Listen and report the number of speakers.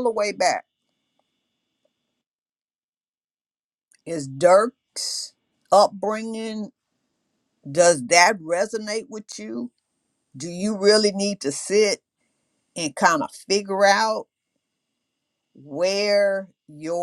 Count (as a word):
one